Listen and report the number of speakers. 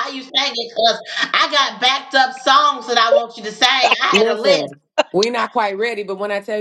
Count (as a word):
two